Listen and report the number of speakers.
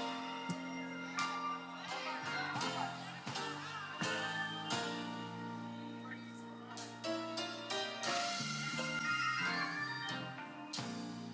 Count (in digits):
0